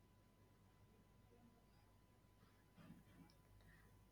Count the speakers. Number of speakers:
0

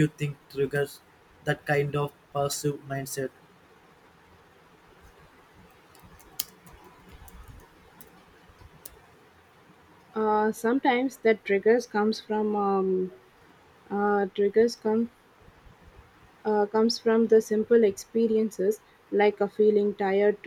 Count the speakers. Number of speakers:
2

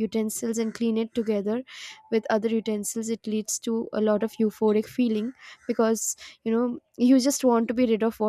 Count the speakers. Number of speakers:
1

